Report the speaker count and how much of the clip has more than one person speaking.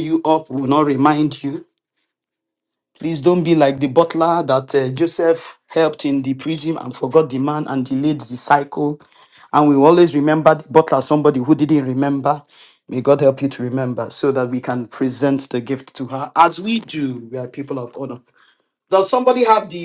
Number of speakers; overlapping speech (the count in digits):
1, no overlap